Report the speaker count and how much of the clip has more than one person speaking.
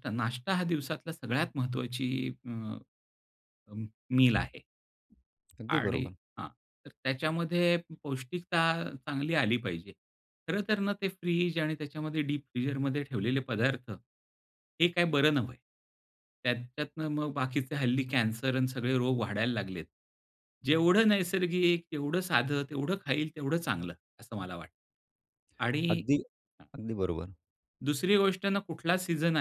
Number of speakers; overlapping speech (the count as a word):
two, about 2%